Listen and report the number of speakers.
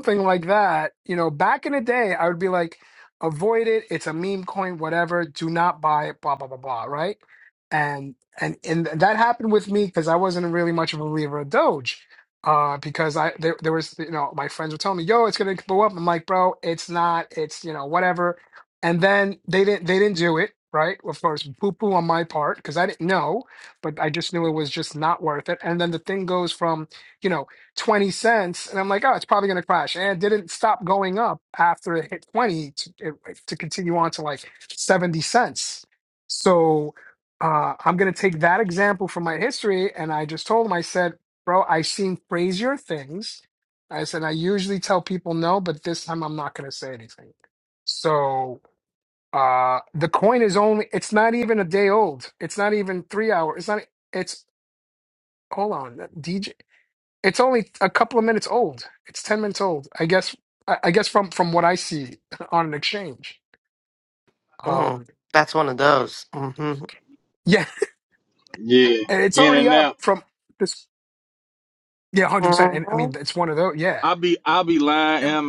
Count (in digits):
3